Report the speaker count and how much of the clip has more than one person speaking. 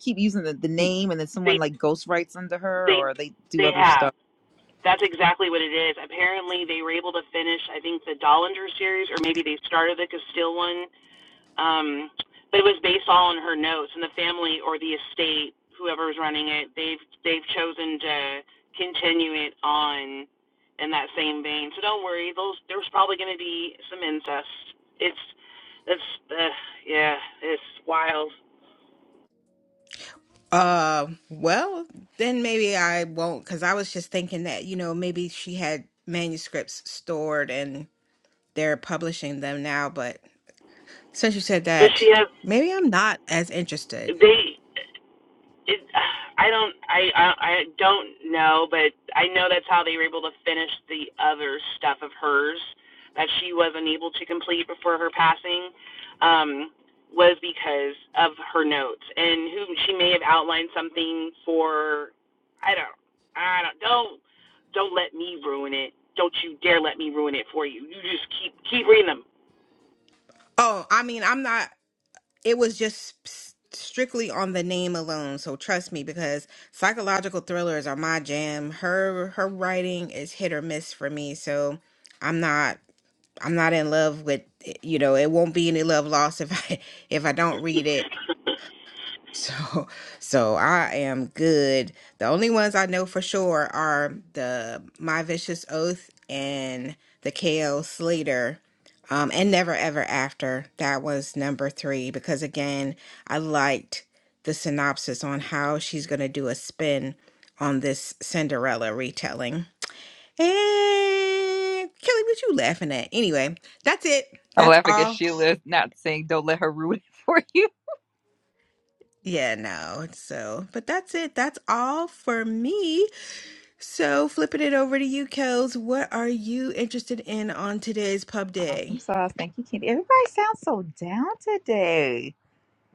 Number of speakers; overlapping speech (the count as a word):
three, about 2%